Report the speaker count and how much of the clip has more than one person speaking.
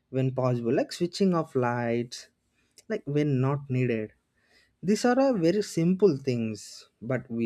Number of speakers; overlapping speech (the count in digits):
1, no overlap